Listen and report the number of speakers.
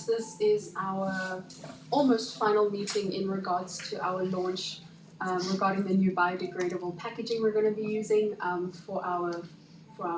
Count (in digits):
1